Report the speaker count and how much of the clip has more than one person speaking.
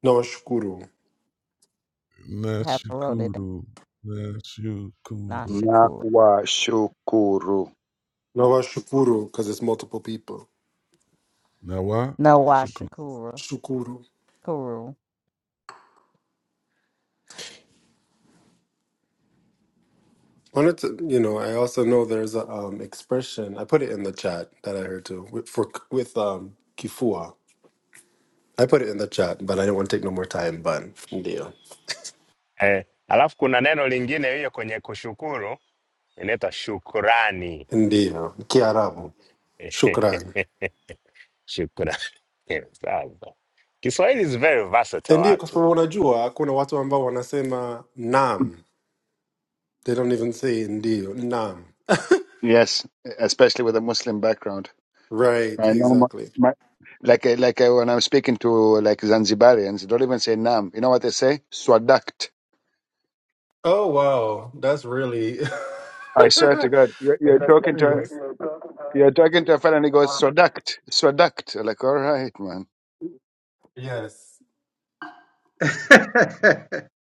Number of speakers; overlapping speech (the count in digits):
6, about 4%